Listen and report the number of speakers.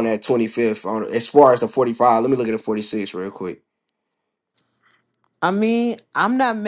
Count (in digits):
2